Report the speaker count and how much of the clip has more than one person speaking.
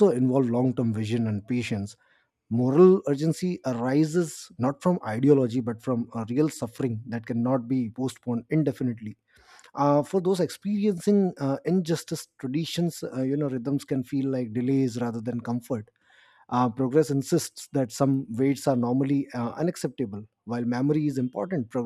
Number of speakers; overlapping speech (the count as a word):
one, no overlap